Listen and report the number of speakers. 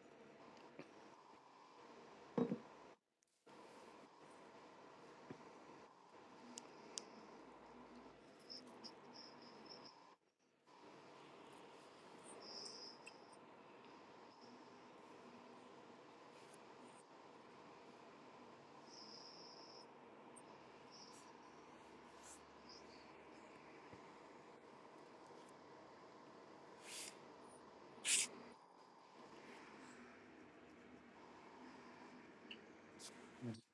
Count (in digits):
0